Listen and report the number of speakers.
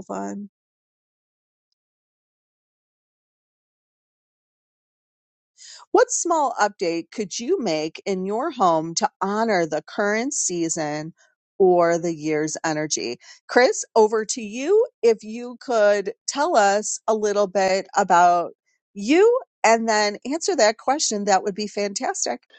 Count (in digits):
1